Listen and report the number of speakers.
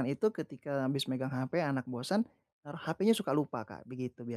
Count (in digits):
1